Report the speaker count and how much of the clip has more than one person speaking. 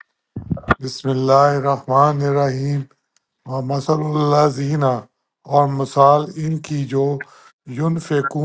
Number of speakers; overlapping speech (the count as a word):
one, no overlap